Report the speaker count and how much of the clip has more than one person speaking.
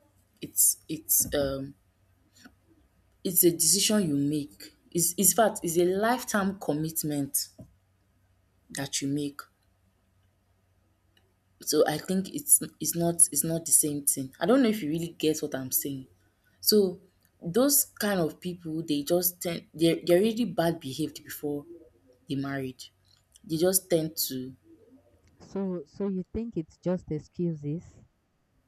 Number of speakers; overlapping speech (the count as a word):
two, no overlap